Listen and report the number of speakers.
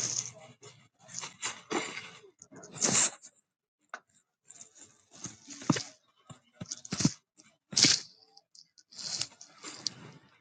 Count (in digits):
0